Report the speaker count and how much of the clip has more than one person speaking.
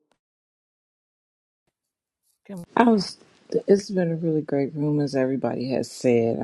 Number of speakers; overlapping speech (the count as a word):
one, no overlap